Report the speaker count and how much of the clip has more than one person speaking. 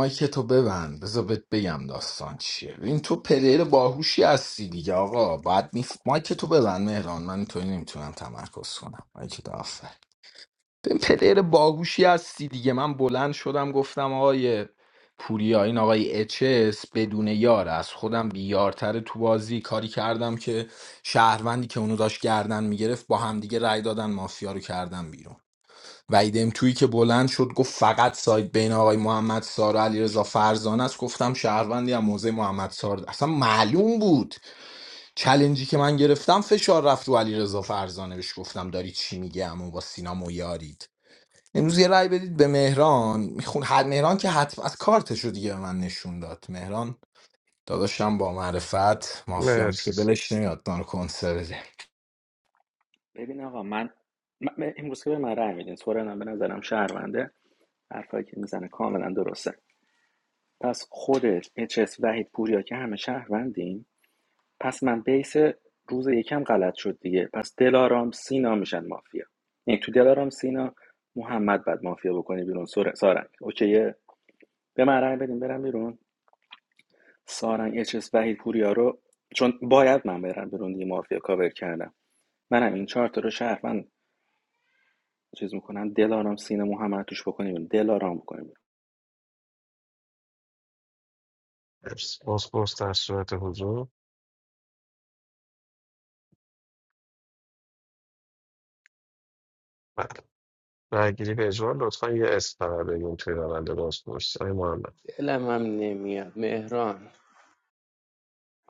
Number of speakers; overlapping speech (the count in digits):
4, about 1%